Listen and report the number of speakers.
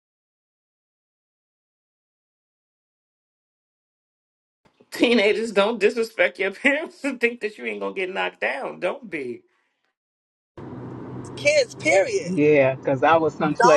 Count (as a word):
three